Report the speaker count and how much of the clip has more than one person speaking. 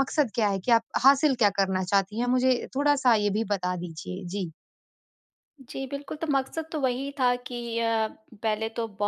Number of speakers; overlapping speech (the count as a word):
two, no overlap